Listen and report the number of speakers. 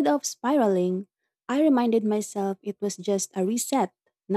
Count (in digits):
1